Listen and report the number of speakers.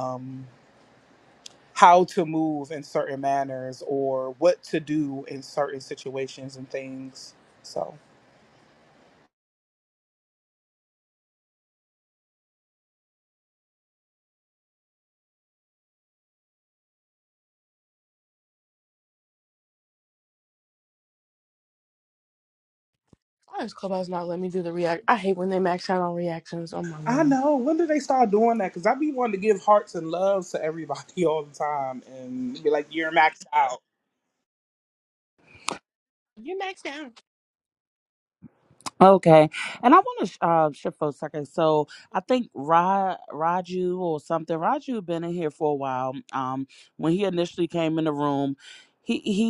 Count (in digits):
3